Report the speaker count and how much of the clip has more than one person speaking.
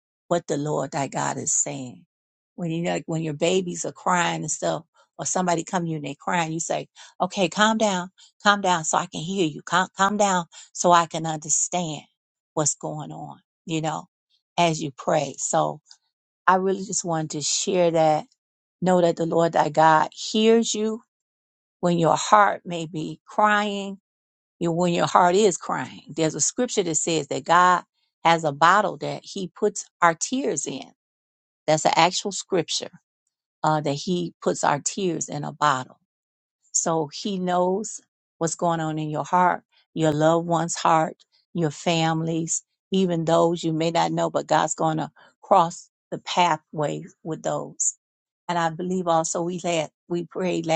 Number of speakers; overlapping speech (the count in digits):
1, no overlap